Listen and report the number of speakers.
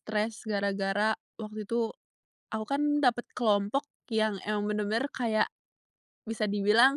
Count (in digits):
1